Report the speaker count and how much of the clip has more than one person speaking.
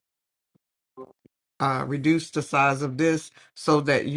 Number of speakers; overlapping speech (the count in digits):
1, no overlap